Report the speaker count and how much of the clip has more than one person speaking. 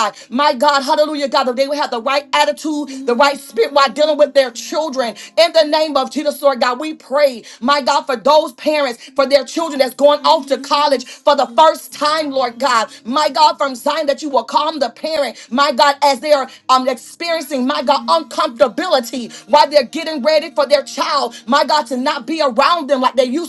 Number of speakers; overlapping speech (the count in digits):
1, no overlap